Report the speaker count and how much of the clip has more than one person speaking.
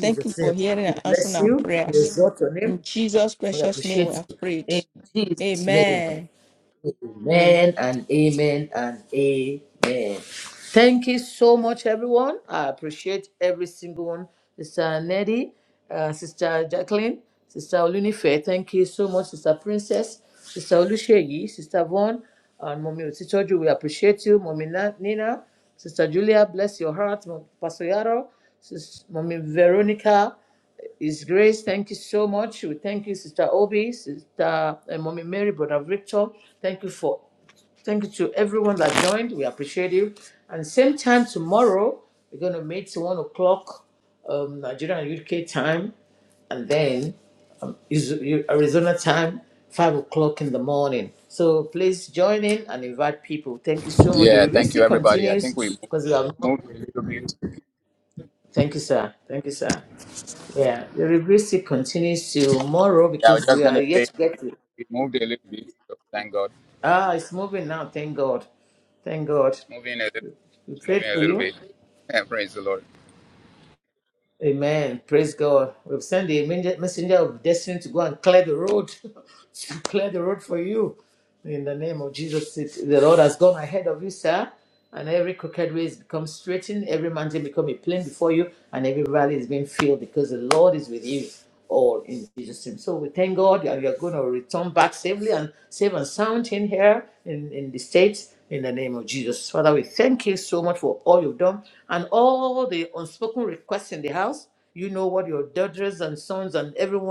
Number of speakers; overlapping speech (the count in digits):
3, about 6%